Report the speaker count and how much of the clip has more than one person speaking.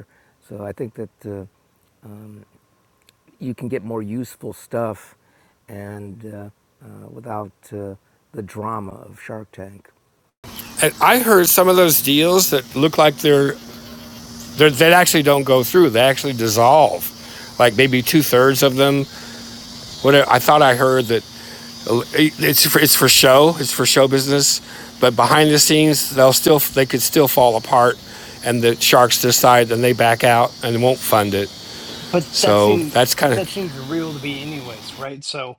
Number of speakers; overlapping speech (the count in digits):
3, about 2%